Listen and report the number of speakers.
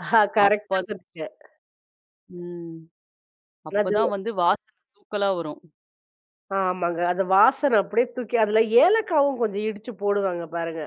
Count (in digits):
2